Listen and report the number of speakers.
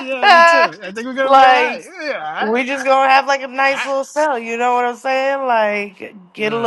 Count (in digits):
2